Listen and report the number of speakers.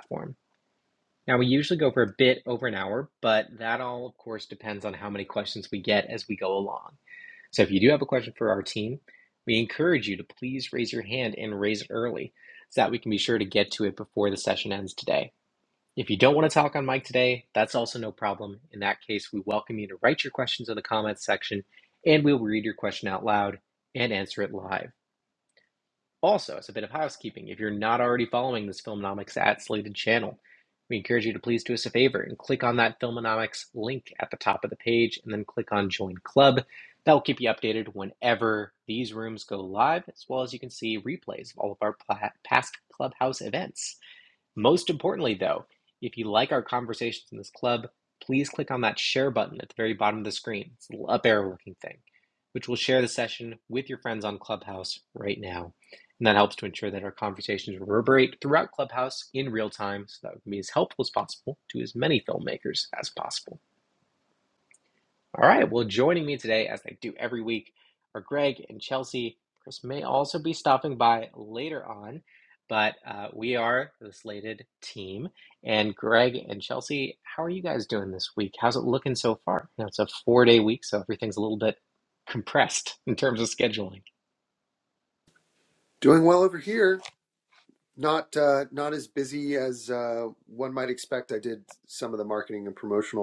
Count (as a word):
two